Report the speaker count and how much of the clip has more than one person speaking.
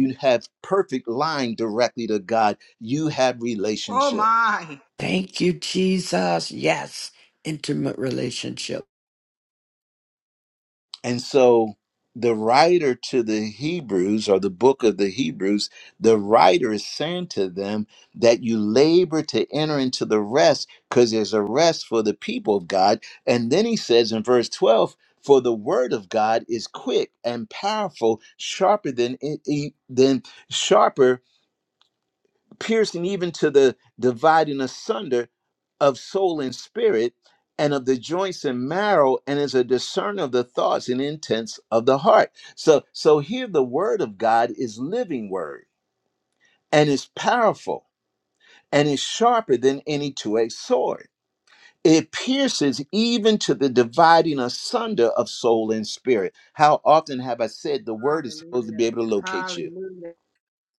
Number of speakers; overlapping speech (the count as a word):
three, about 3%